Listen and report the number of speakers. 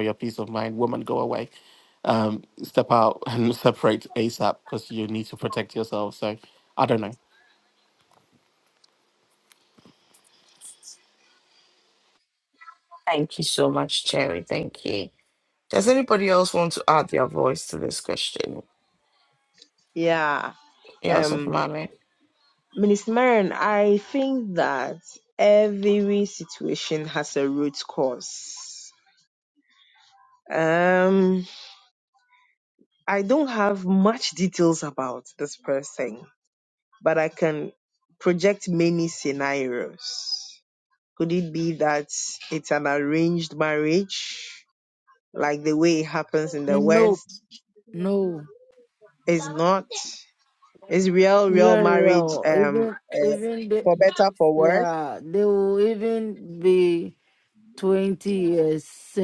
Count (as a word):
four